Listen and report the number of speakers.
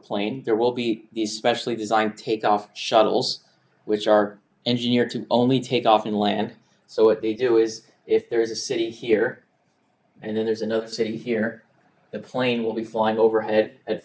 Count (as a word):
one